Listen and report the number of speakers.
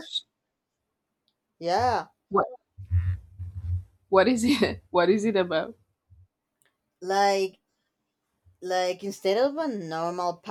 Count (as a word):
two